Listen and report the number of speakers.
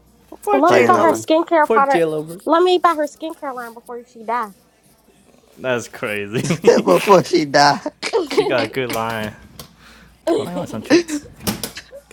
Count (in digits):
3